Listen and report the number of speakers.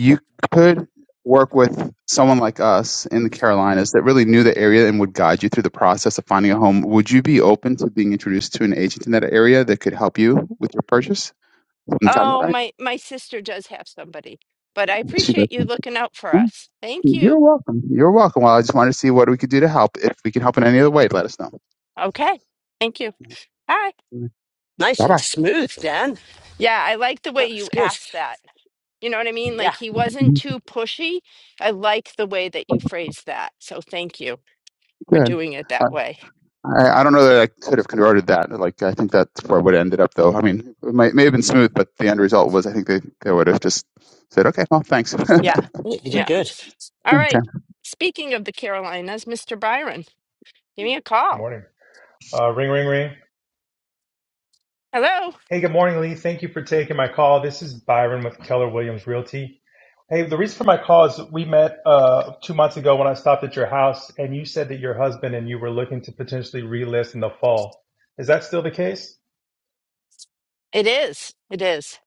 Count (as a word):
four